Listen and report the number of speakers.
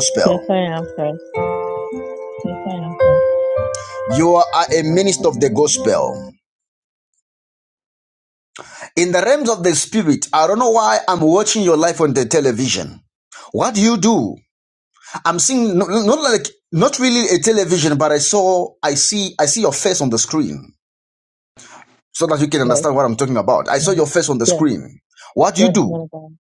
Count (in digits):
2